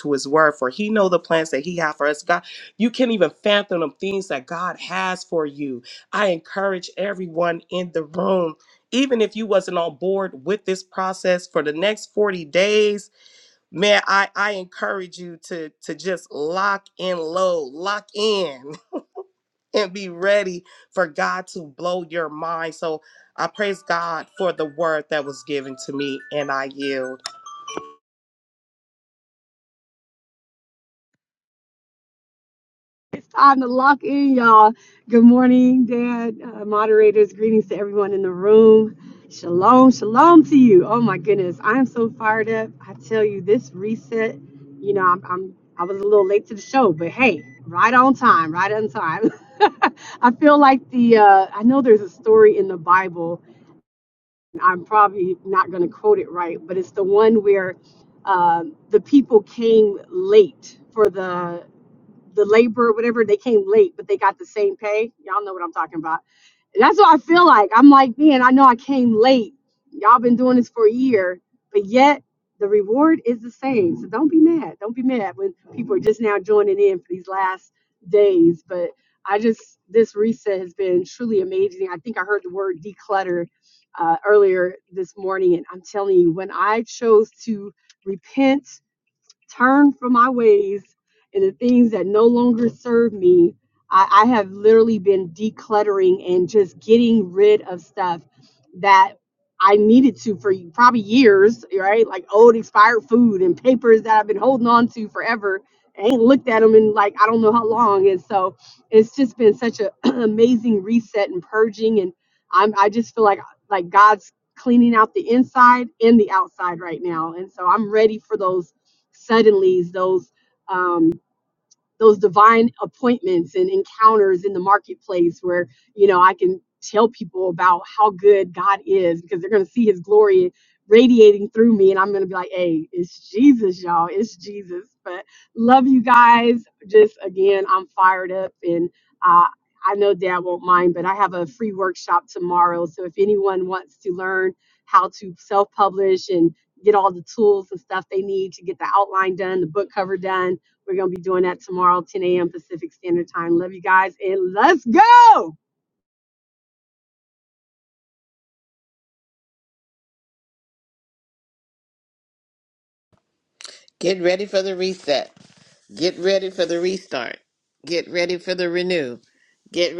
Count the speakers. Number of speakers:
3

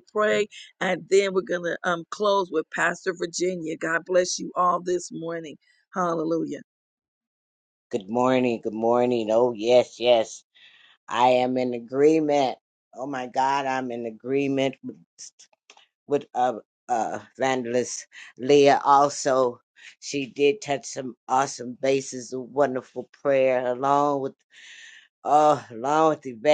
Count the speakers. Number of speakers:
2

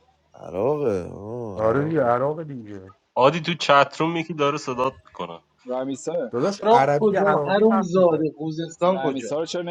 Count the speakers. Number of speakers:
5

